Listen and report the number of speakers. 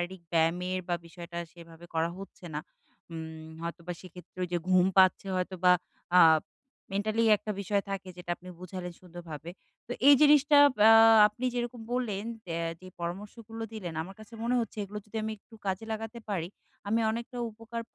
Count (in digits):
1